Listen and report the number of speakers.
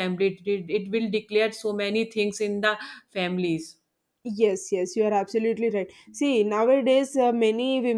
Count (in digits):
2